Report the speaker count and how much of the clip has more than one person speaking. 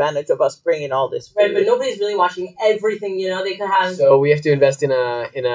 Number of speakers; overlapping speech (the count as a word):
three, about 8%